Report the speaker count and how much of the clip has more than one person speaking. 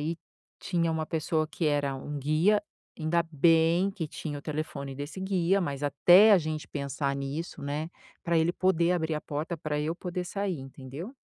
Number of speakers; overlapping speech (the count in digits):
1, no overlap